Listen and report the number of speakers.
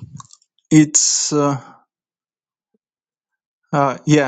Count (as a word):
one